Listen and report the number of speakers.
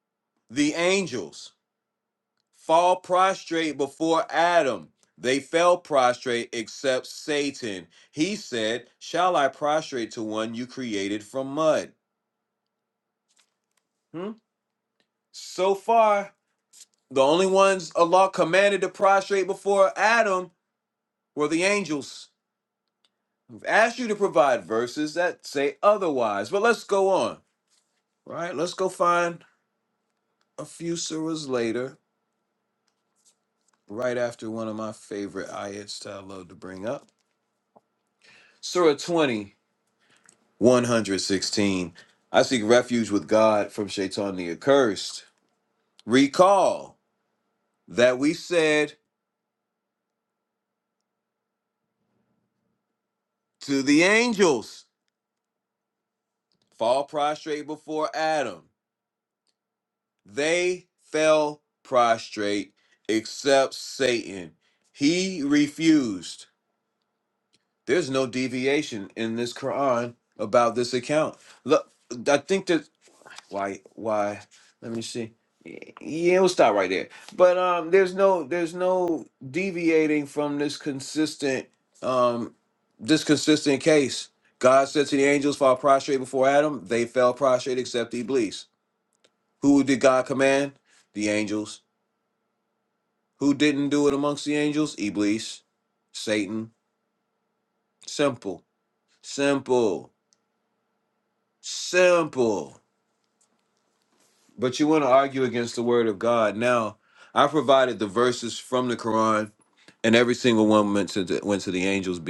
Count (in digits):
1